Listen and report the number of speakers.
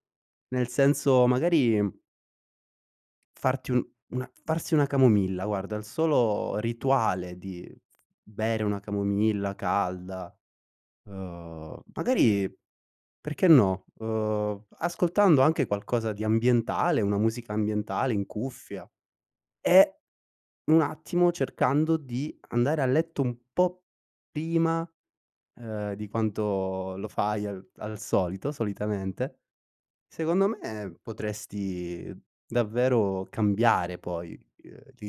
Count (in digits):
1